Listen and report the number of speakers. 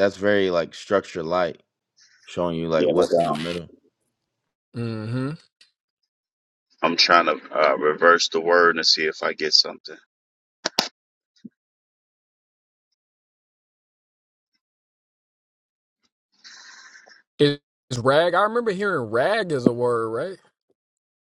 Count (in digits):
3